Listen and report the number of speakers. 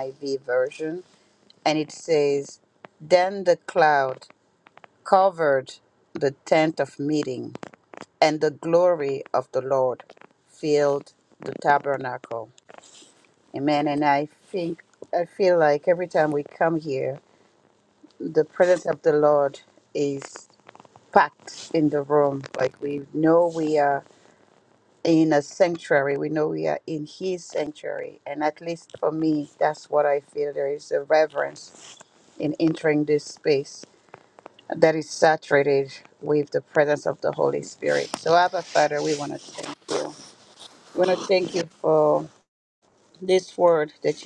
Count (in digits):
1